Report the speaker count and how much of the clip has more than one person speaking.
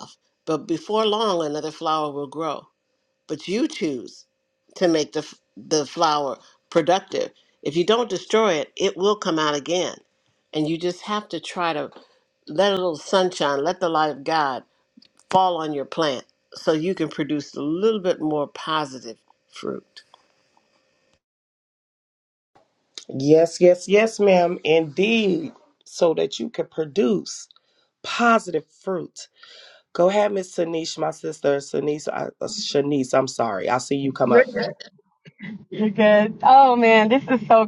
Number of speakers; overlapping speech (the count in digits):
3, no overlap